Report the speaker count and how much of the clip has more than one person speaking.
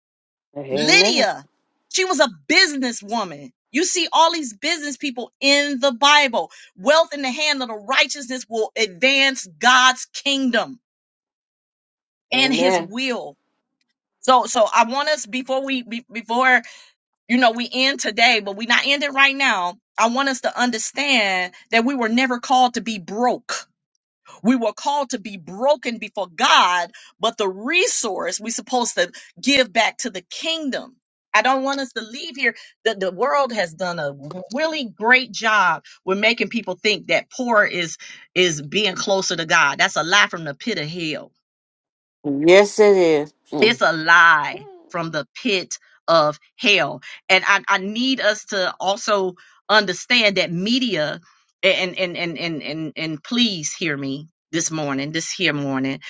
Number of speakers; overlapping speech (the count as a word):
two, about 2%